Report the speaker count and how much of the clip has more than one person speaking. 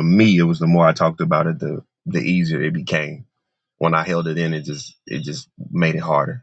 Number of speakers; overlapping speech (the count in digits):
1, no overlap